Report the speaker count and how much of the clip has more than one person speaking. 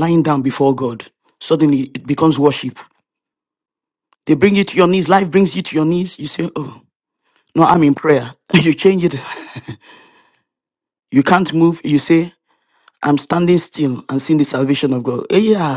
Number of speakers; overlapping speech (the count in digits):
1, no overlap